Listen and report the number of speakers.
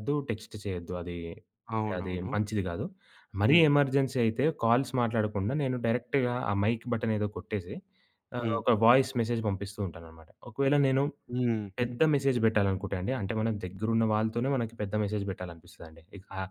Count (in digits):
2